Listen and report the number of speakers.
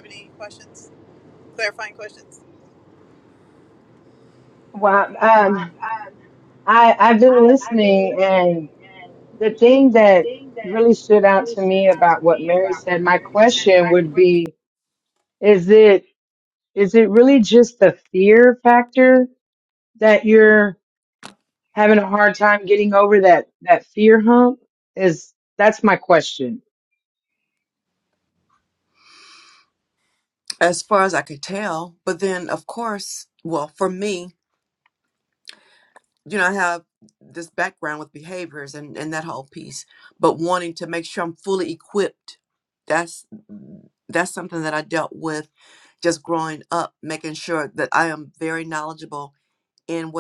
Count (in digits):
3